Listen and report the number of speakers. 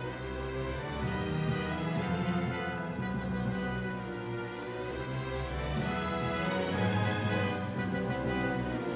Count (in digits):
0